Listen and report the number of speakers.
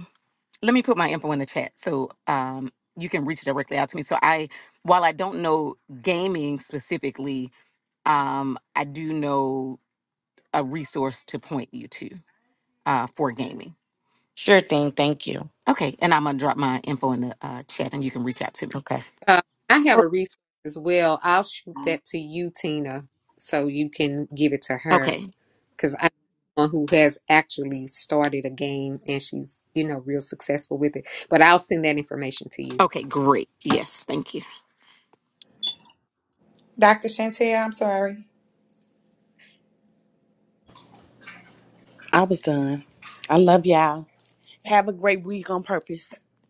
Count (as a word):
five